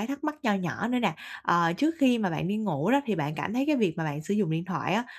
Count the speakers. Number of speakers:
1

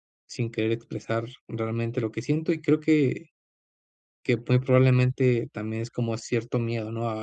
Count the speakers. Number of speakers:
1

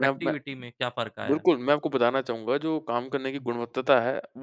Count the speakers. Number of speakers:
2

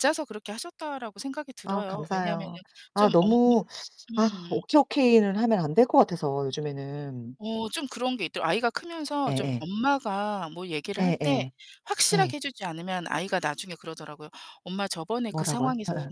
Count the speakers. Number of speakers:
2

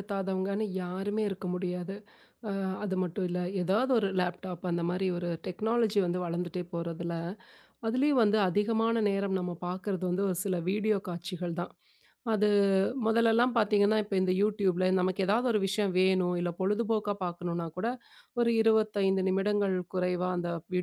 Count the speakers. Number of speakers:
1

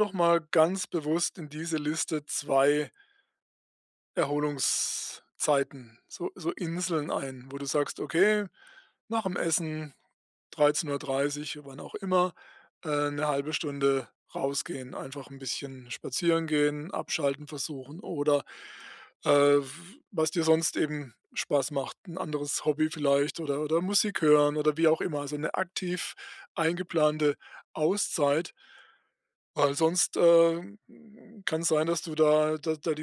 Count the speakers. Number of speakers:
1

